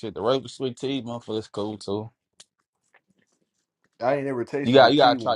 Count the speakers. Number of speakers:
two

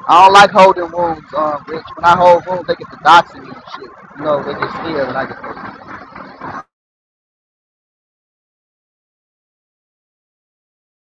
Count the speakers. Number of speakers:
one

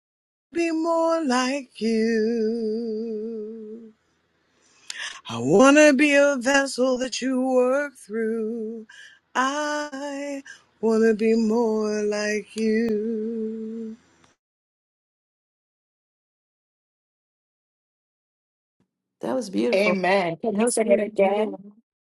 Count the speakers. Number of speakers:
three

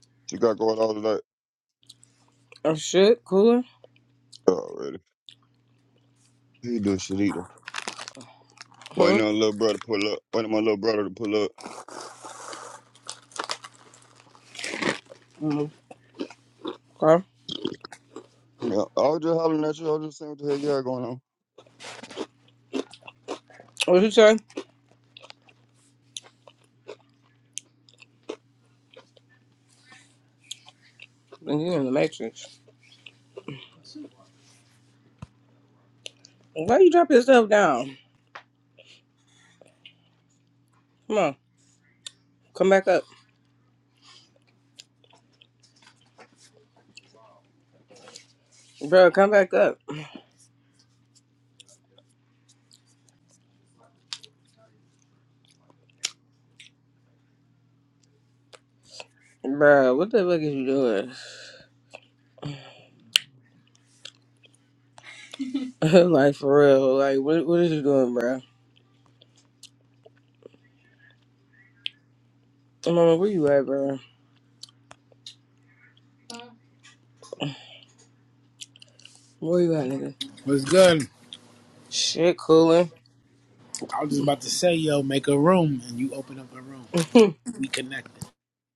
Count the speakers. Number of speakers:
three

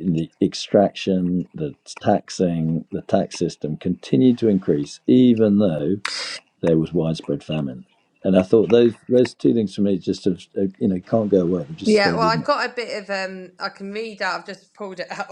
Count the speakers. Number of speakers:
two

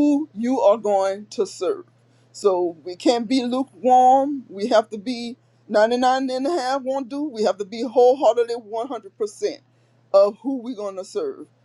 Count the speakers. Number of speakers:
one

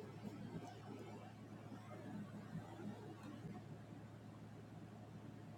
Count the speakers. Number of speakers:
zero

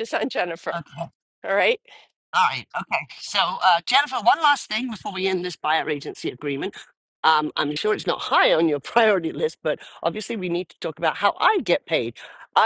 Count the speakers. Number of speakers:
two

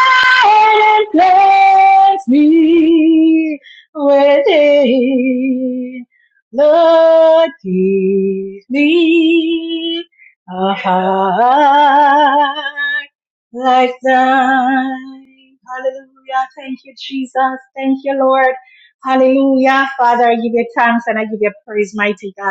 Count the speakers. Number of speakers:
one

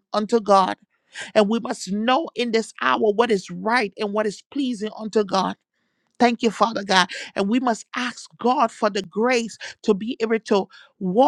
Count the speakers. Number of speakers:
one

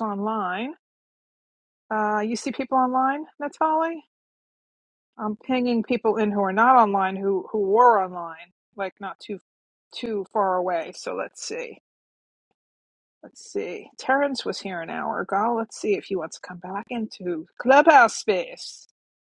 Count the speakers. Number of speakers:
one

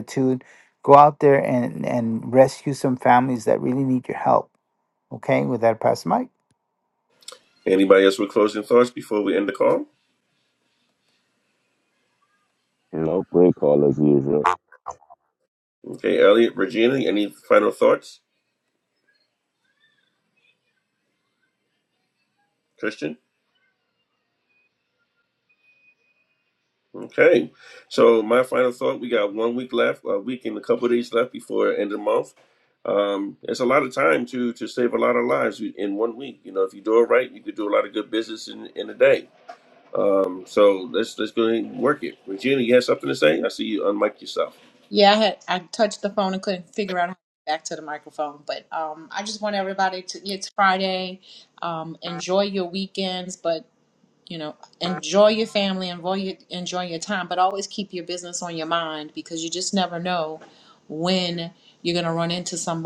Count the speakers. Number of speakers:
four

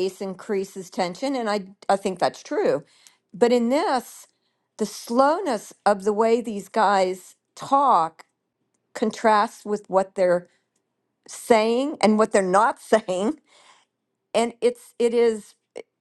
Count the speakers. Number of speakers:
one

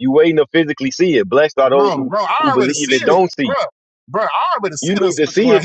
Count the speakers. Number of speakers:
two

